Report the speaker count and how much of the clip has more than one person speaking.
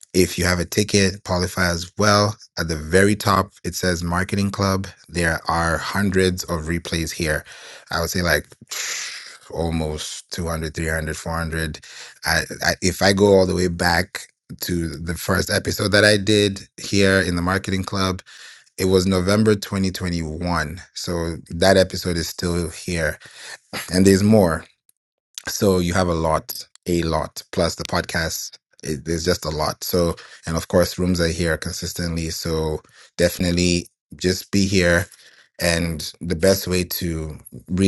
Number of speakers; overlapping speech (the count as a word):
one, no overlap